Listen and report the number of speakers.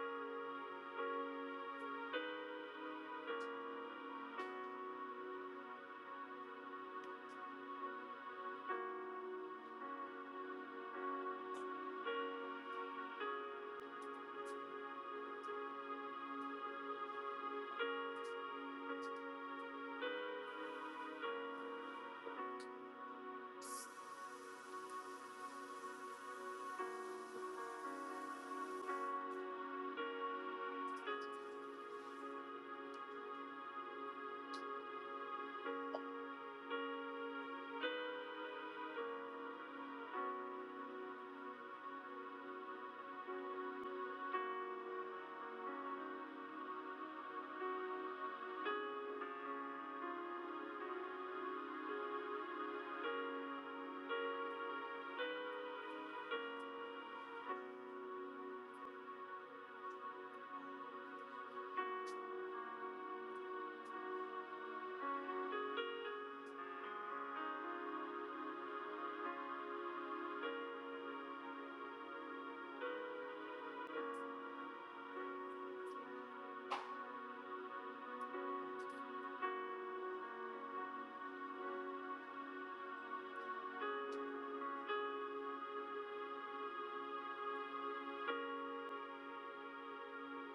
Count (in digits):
0